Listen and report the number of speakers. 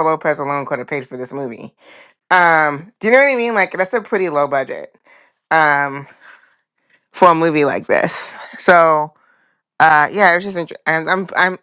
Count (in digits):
1